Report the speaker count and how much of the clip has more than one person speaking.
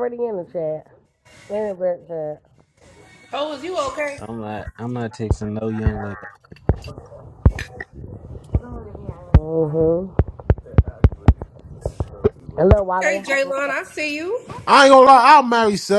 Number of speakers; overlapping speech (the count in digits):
4, about 5%